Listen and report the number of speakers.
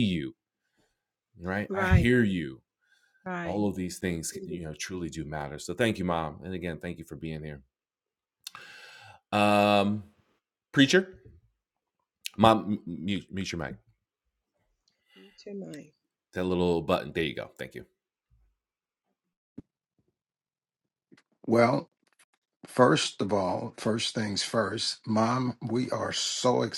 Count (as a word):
three